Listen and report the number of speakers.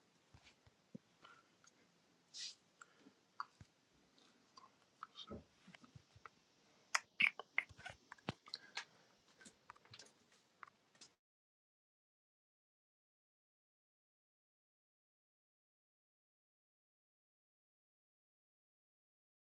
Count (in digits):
0